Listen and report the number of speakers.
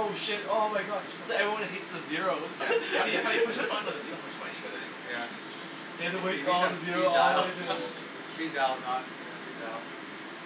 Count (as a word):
three